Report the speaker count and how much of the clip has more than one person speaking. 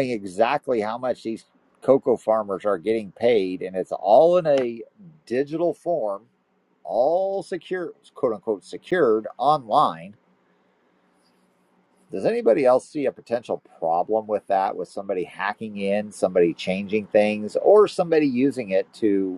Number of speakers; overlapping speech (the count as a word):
one, no overlap